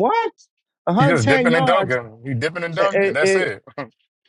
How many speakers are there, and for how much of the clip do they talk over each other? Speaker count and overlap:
two, about 37%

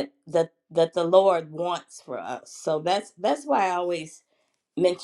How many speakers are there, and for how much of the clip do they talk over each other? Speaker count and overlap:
one, no overlap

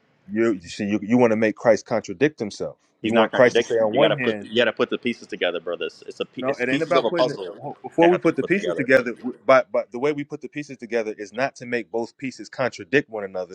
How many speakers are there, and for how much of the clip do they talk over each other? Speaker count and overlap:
two, about 24%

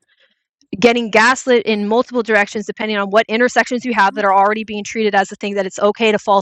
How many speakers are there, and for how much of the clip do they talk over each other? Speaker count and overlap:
one, no overlap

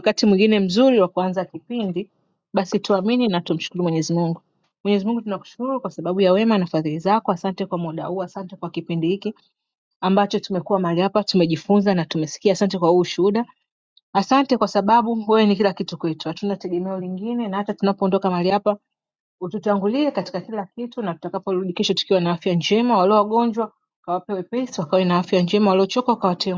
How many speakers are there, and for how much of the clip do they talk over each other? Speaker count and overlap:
one, no overlap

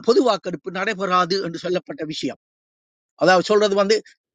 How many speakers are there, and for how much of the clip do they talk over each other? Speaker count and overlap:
one, no overlap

